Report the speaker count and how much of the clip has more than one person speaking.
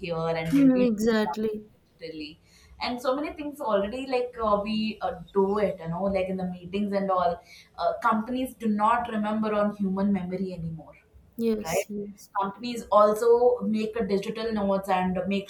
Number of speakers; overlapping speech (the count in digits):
2, about 5%